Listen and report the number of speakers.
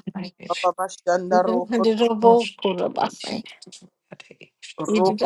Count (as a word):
three